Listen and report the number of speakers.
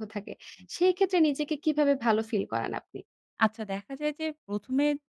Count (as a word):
two